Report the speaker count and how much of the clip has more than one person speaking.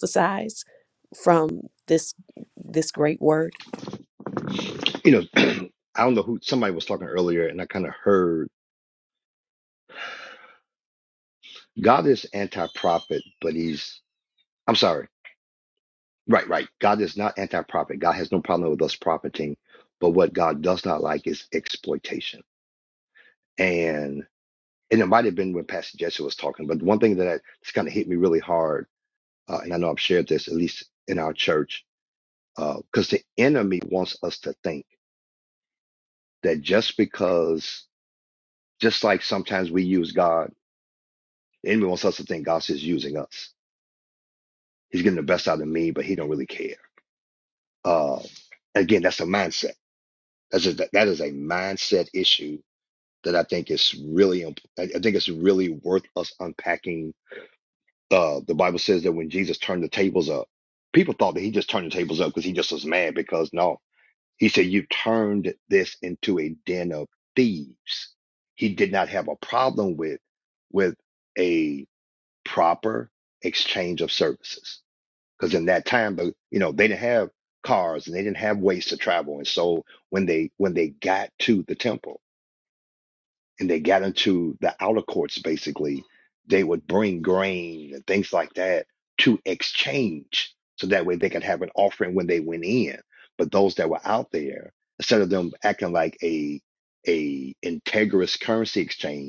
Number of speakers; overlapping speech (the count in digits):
2, no overlap